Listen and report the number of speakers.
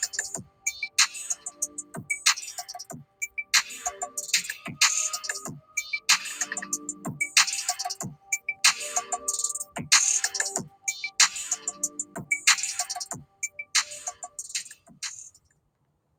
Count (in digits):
0